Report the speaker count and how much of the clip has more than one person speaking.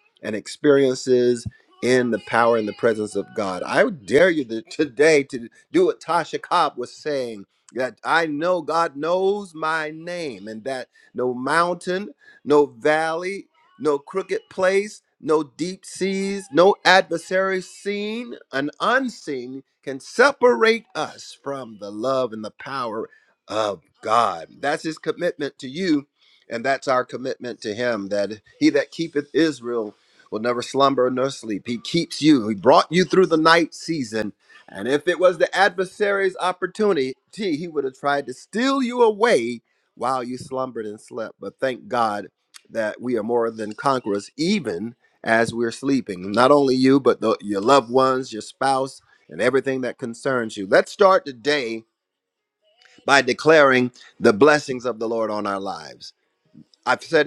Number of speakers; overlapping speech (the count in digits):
1, no overlap